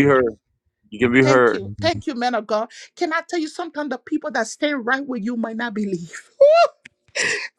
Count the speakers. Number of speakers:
two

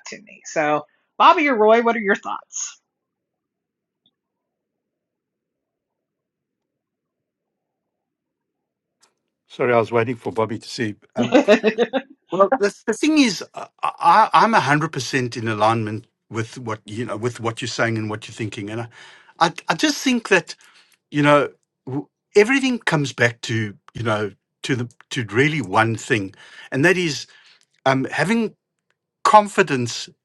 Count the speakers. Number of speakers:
two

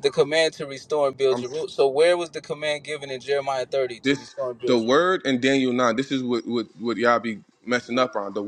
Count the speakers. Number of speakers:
two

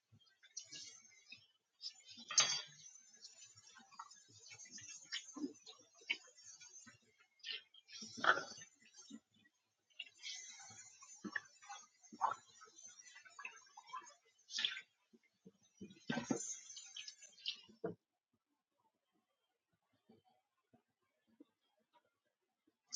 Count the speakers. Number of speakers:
zero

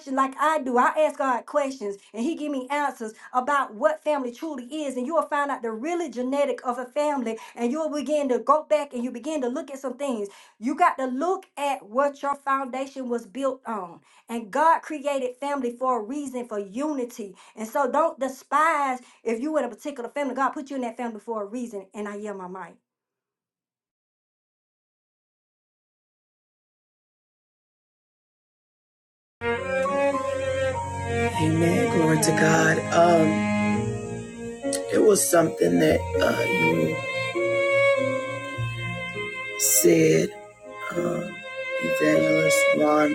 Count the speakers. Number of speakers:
two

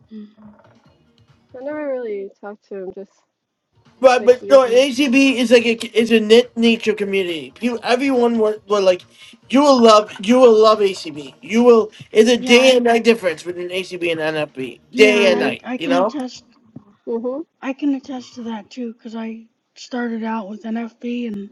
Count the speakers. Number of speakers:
three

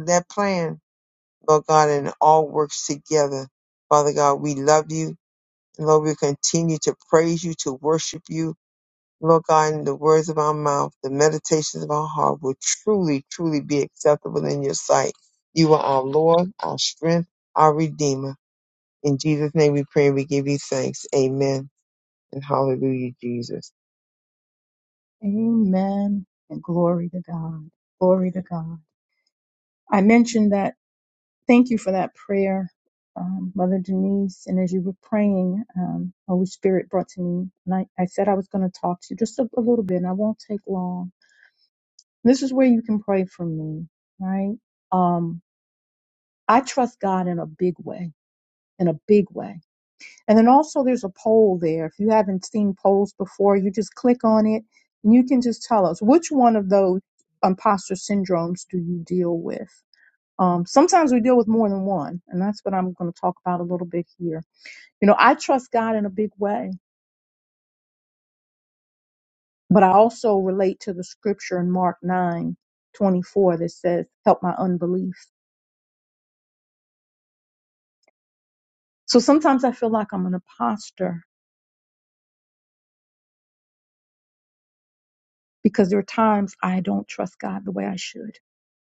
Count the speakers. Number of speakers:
two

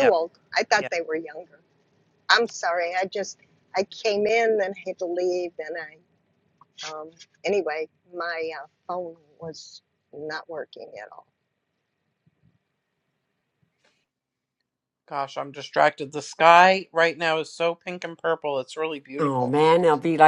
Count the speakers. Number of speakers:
three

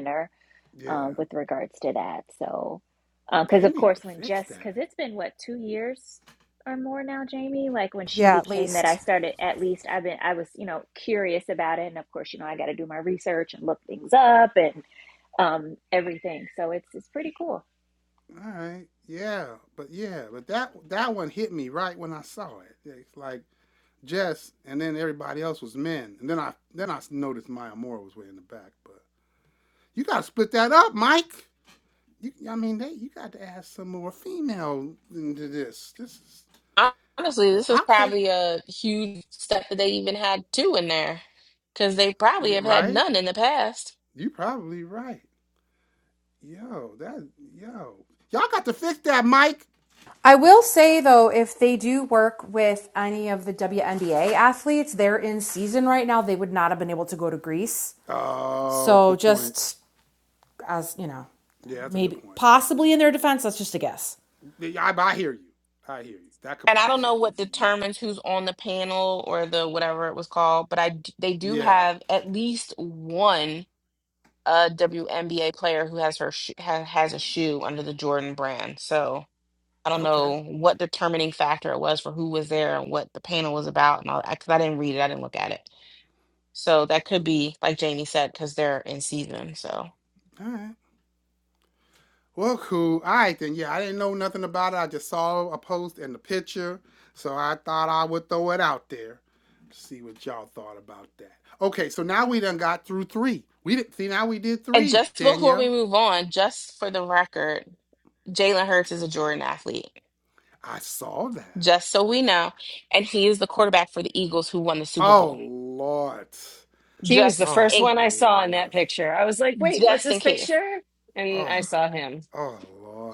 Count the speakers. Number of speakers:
five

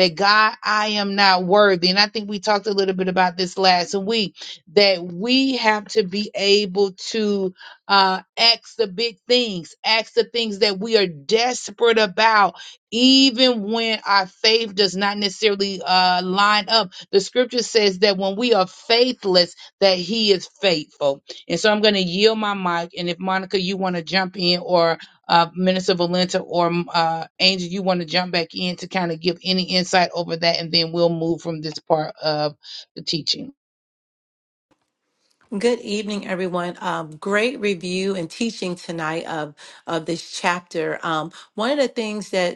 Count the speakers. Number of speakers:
two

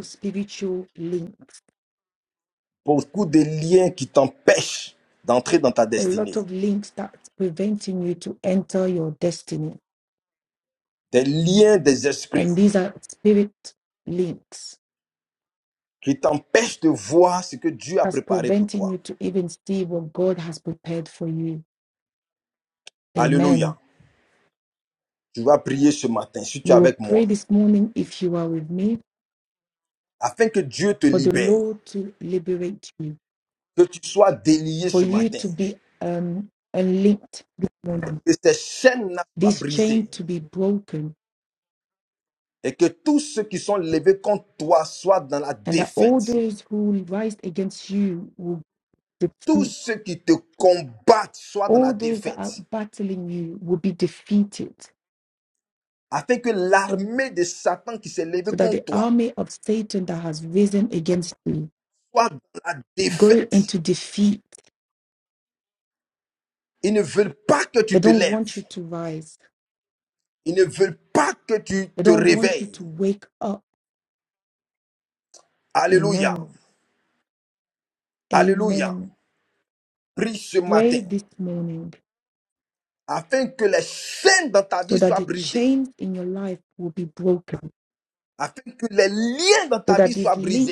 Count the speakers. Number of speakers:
two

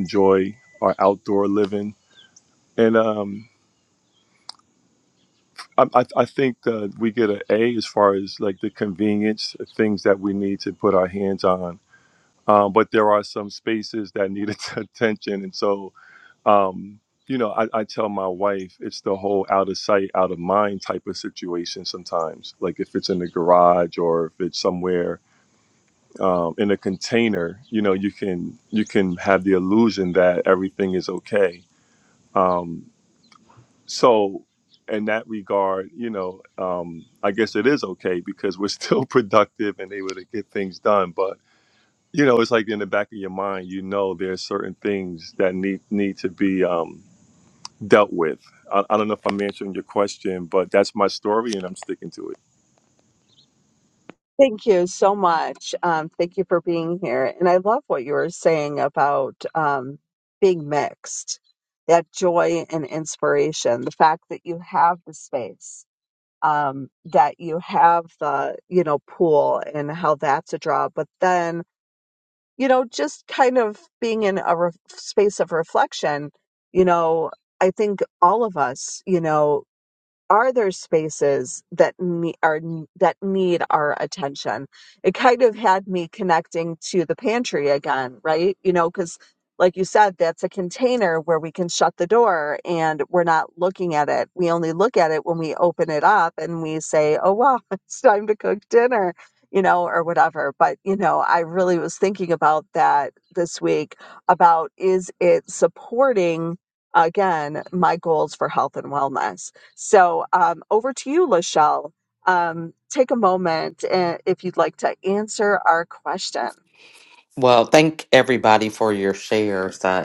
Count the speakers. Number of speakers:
three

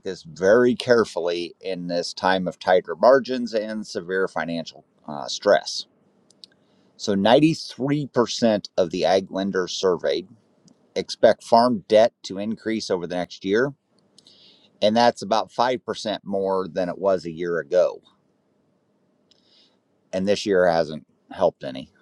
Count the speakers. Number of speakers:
one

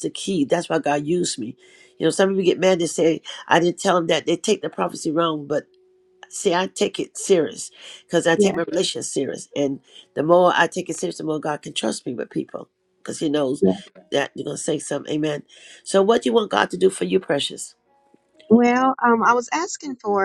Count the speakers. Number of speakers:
two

